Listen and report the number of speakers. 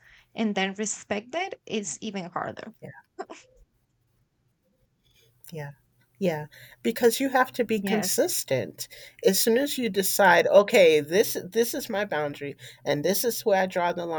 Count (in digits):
2